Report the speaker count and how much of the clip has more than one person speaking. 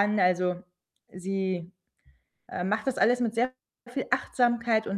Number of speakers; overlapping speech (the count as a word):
one, no overlap